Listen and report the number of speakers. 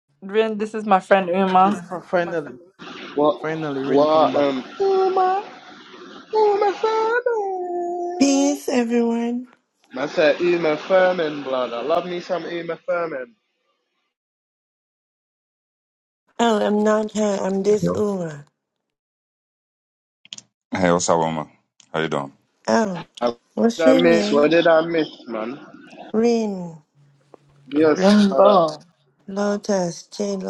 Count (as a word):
five